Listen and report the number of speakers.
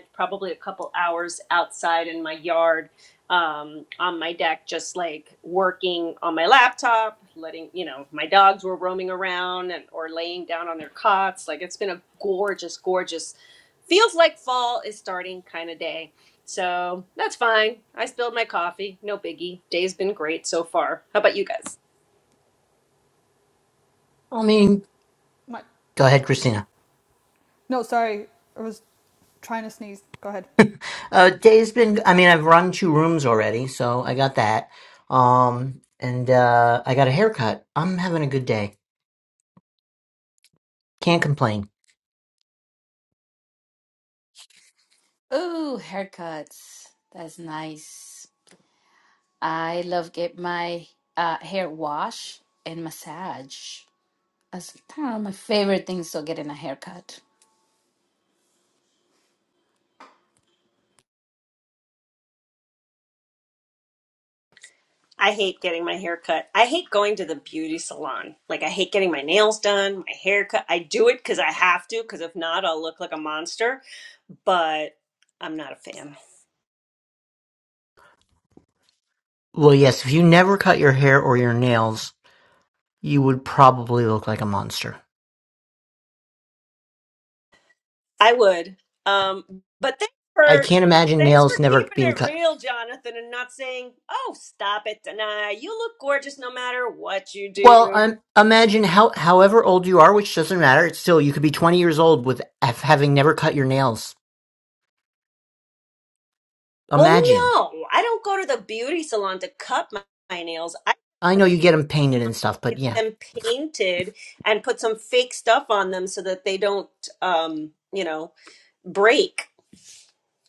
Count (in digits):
4